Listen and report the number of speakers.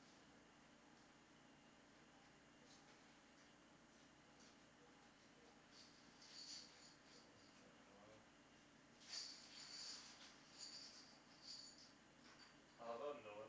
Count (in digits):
1